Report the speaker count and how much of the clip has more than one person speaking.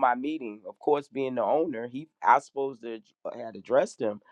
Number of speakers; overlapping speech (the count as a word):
one, no overlap